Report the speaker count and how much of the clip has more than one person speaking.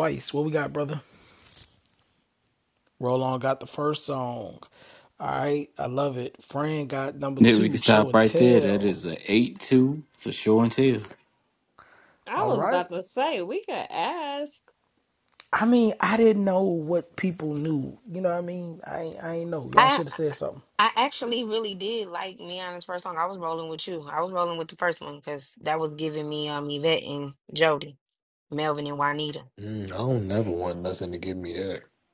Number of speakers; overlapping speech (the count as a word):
five, about 7%